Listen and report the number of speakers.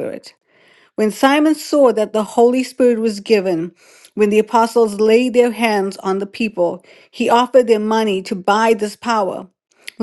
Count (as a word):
one